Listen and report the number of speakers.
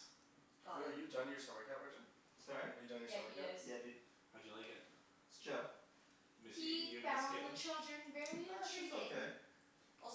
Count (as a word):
four